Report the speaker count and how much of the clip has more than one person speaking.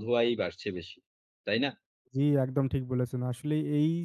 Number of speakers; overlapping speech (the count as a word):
two, no overlap